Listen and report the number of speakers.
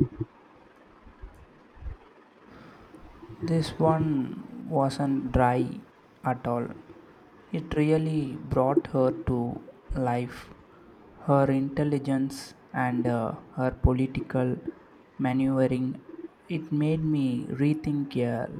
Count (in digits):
1